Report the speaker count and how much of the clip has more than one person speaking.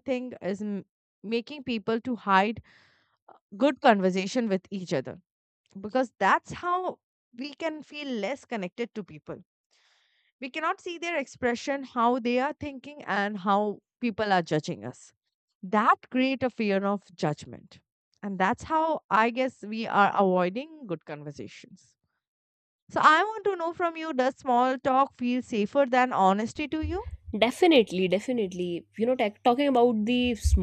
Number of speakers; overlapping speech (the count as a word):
two, no overlap